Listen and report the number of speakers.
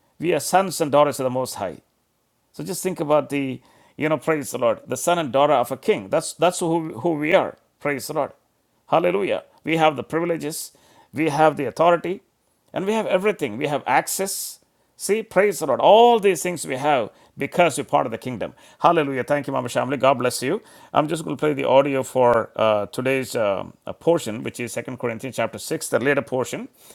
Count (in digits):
1